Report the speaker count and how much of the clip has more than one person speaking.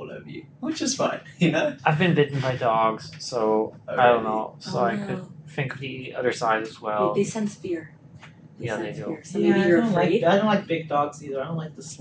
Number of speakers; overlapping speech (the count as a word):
four, about 25%